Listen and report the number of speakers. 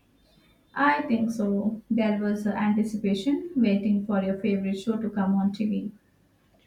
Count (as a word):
one